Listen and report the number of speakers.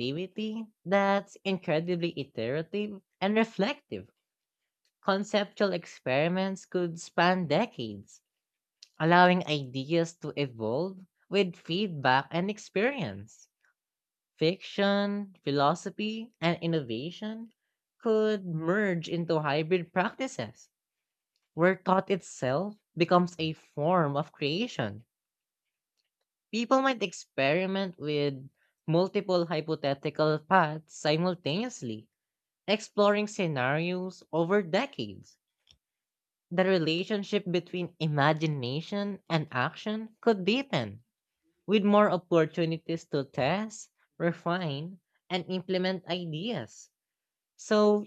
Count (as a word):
one